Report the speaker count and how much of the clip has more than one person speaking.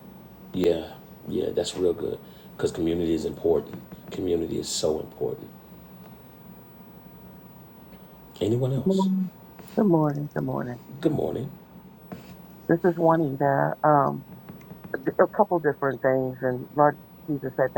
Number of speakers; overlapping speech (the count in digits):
2, about 1%